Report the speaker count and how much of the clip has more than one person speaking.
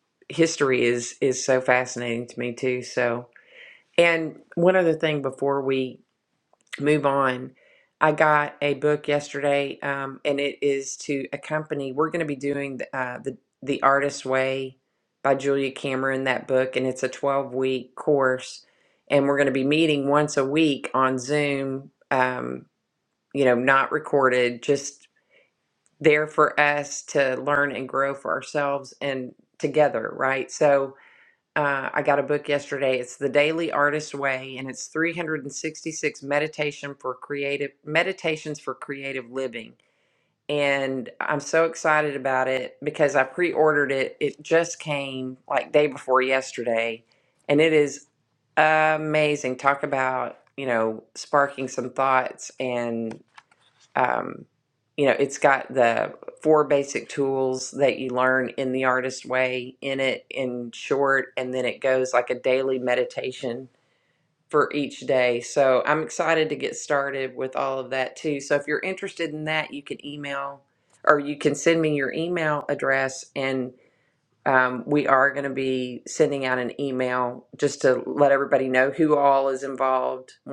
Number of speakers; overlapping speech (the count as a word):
one, no overlap